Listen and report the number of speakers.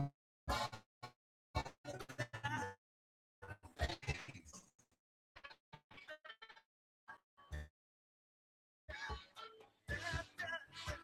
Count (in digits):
0